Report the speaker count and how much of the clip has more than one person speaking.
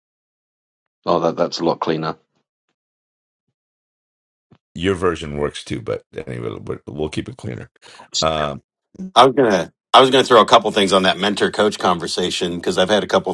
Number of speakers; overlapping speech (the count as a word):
three, no overlap